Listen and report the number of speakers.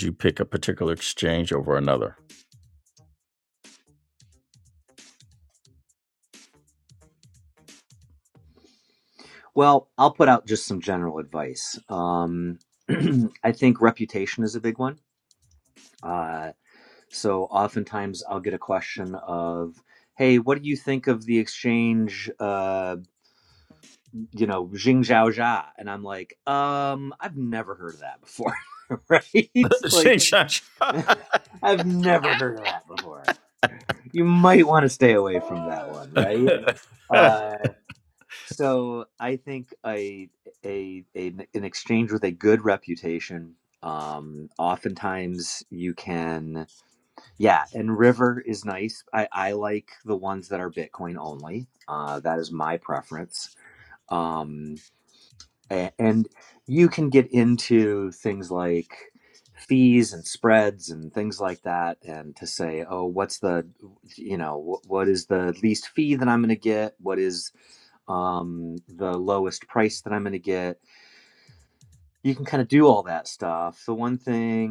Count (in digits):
2